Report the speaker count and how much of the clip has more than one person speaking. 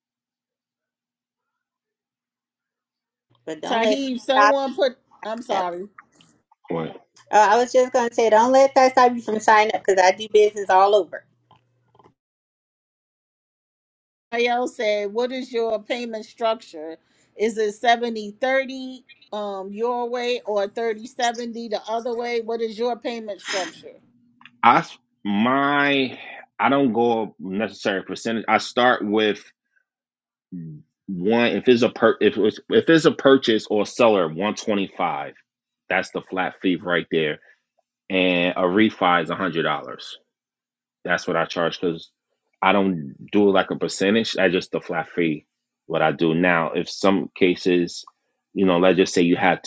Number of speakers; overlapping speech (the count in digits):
3, about 1%